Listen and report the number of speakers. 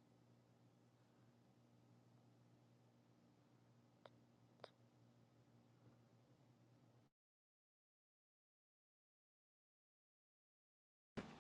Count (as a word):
zero